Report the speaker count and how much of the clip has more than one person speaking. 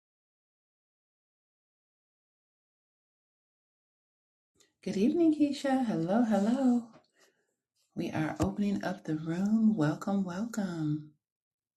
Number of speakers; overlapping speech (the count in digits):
1, no overlap